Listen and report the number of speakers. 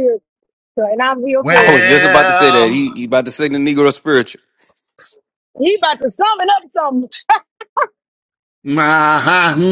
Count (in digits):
3